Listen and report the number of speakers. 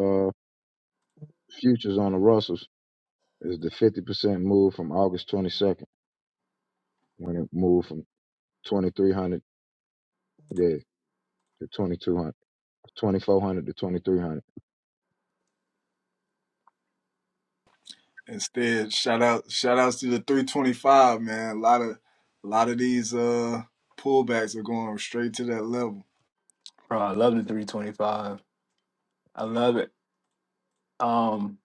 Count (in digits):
3